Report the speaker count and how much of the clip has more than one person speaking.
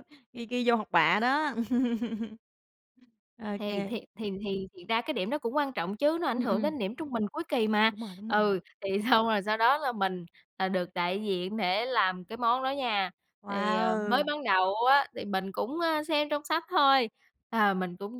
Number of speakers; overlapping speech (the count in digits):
2, about 8%